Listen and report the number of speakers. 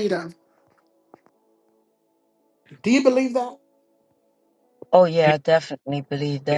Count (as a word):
two